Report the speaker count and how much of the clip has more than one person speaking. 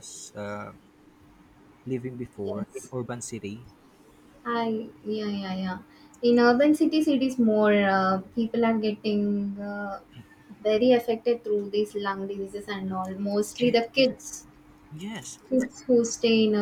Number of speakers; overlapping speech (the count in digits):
2, about 4%